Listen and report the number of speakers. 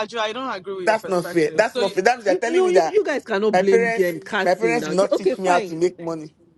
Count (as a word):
three